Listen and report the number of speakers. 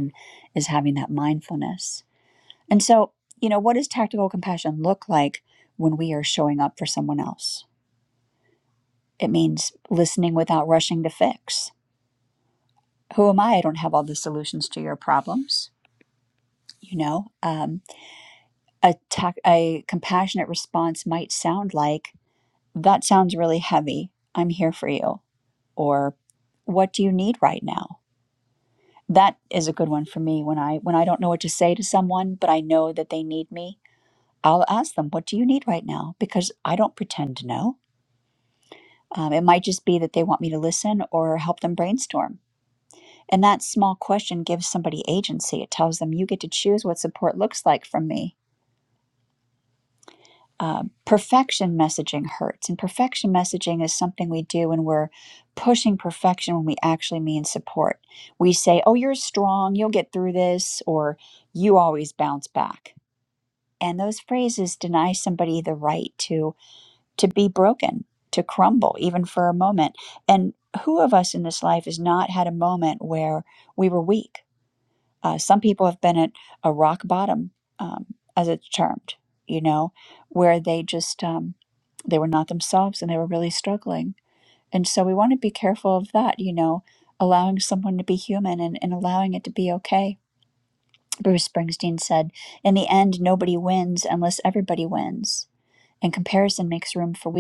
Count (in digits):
1